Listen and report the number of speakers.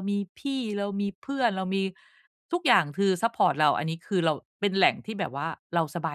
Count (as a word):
one